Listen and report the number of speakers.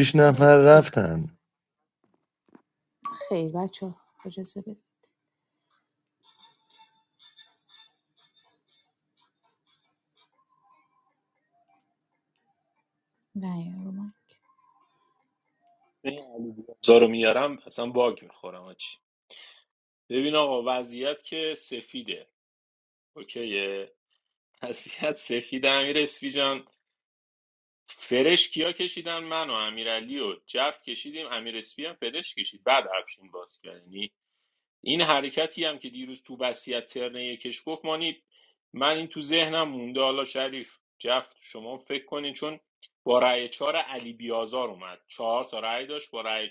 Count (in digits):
3